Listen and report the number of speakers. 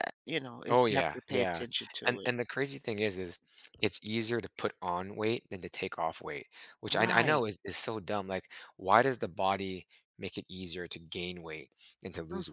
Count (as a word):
two